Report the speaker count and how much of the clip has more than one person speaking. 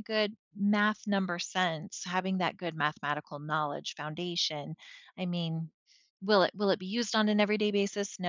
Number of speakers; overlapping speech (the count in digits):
1, no overlap